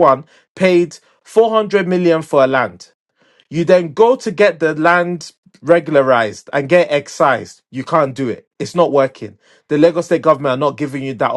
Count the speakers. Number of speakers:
one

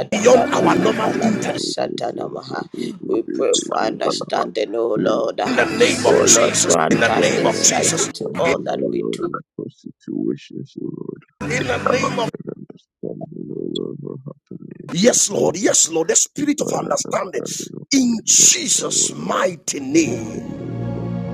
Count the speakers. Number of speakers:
three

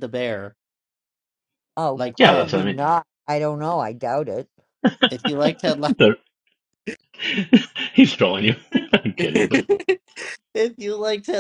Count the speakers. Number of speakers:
three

